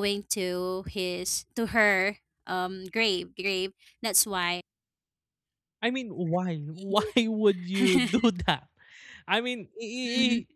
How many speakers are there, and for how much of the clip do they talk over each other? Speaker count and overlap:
two, about 3%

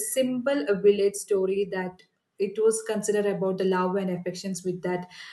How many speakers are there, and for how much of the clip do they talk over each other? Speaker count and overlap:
one, no overlap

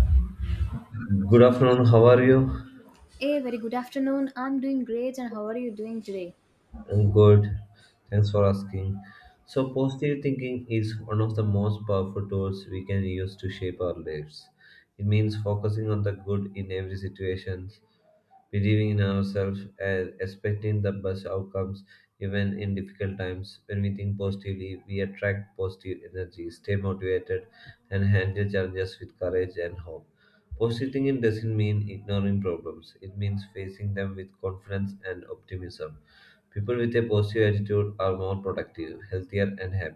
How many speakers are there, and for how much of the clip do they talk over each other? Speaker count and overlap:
two, no overlap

